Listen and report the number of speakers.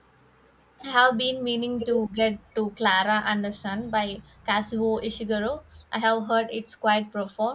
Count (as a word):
one